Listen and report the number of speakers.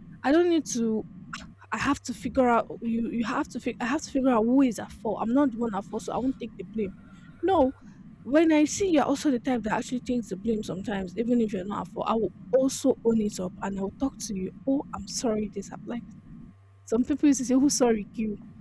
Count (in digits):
1